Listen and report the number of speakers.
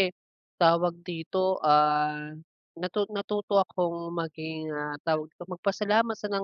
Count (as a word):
one